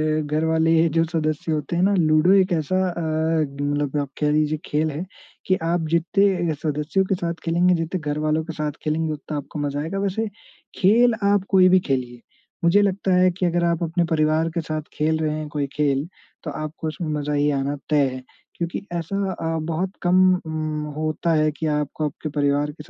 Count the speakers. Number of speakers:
1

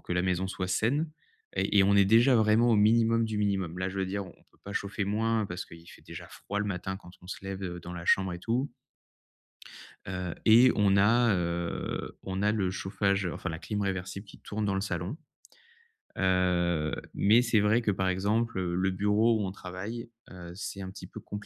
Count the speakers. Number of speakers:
1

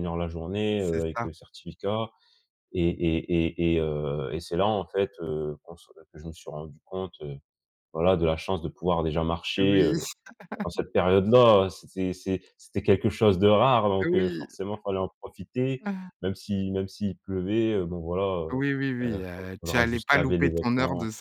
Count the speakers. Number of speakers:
2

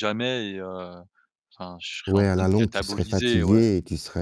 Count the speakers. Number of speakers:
2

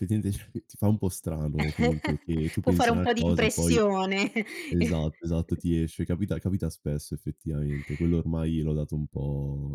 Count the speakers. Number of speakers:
2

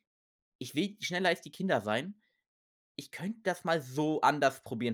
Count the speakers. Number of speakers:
1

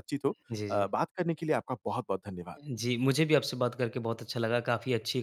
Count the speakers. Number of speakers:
2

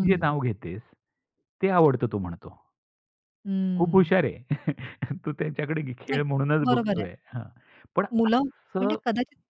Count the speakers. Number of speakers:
2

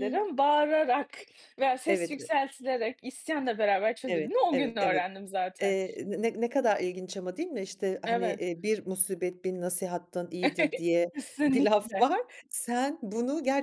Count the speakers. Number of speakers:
2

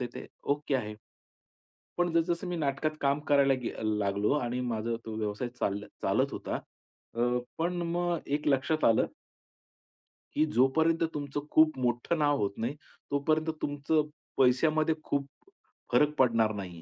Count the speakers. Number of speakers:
1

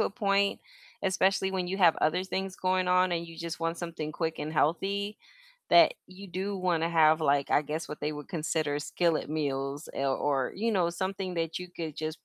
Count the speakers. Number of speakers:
1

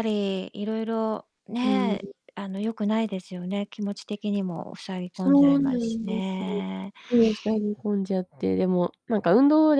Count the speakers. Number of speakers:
2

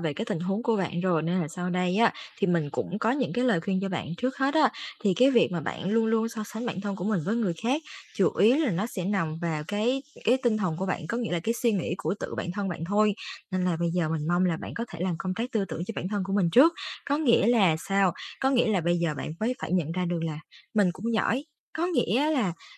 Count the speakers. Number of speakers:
1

